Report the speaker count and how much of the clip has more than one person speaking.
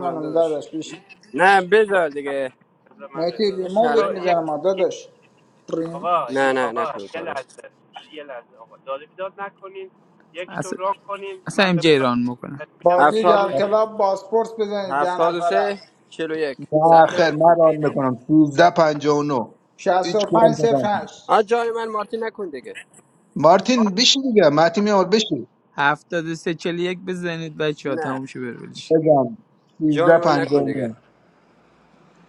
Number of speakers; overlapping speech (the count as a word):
five, about 24%